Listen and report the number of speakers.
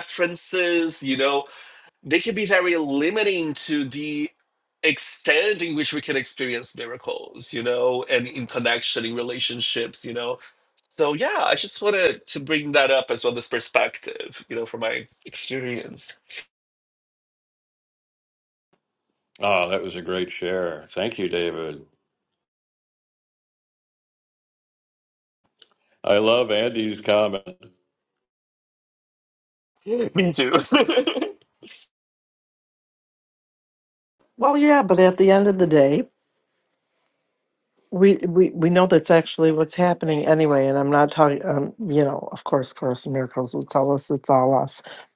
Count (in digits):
3